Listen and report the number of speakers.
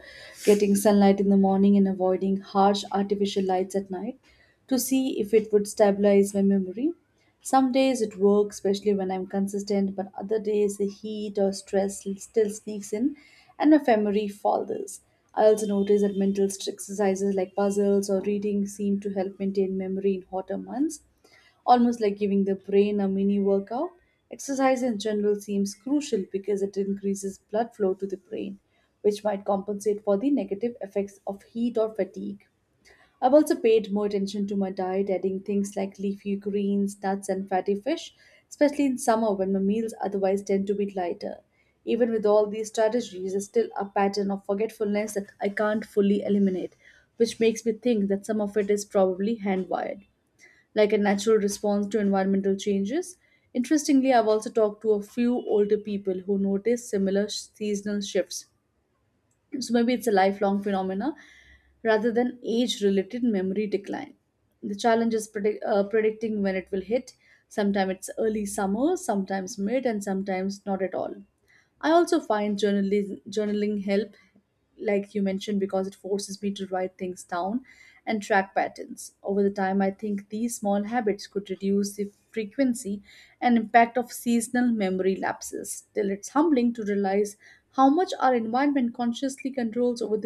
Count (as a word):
one